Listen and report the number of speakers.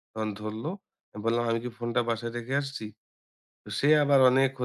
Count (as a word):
one